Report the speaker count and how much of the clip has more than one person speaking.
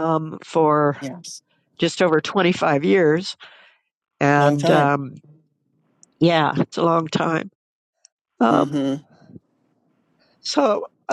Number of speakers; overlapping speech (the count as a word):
two, about 7%